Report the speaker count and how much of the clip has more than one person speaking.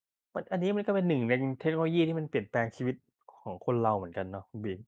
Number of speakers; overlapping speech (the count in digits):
1, no overlap